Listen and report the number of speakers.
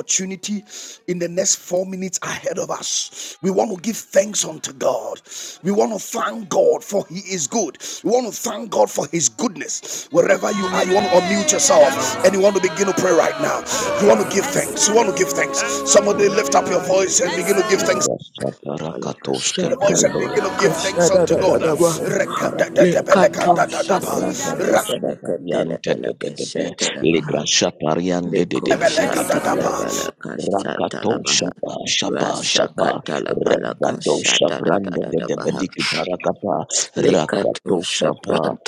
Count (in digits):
3